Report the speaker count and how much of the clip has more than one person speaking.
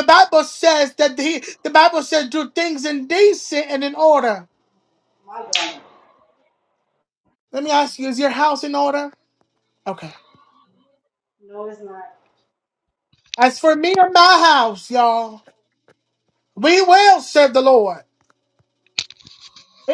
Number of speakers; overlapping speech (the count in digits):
2, no overlap